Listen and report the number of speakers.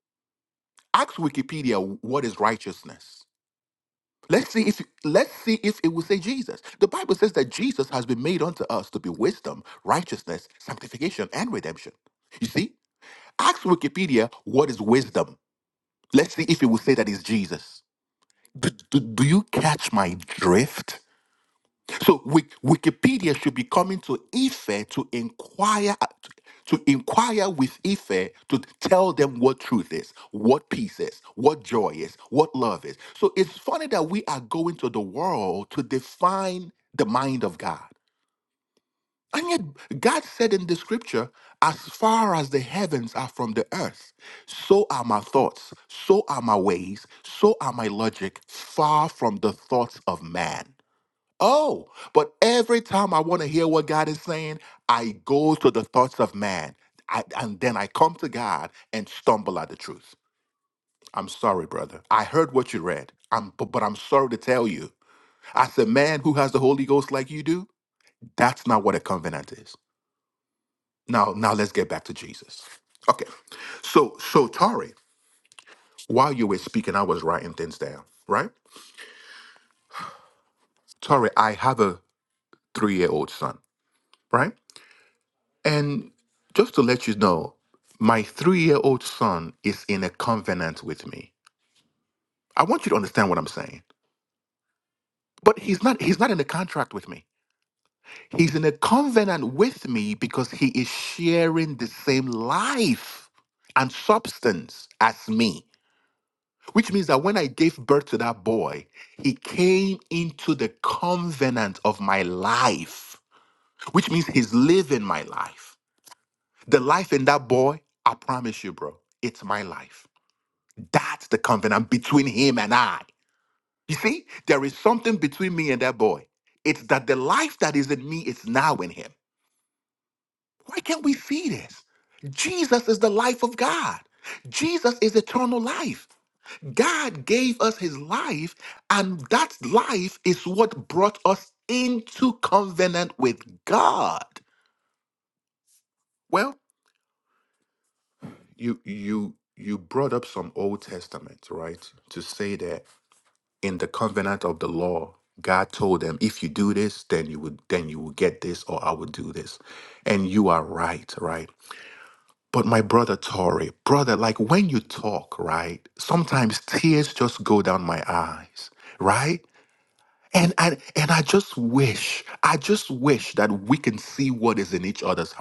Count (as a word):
one